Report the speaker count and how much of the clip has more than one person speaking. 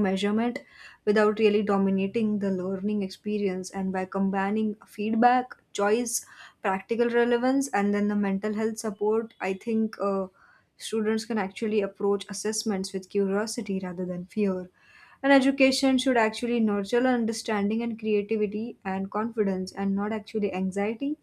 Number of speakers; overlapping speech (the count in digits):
1, no overlap